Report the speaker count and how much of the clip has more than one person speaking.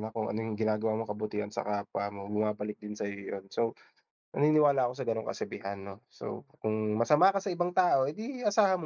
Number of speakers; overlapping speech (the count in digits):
1, no overlap